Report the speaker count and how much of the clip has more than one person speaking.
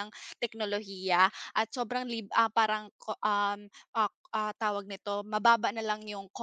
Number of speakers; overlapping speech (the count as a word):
one, no overlap